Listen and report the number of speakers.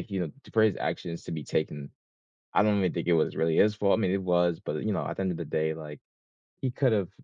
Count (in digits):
1